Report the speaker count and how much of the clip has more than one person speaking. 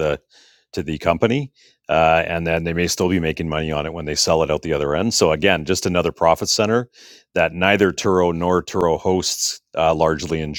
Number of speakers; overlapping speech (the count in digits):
1, no overlap